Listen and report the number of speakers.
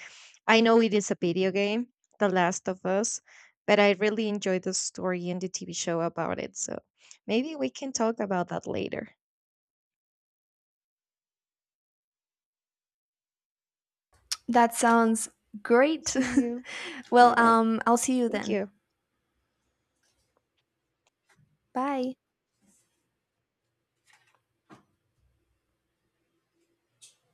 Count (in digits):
2